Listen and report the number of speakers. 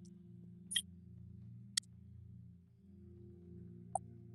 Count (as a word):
zero